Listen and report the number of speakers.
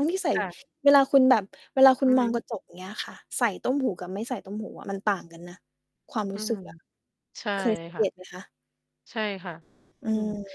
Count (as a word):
two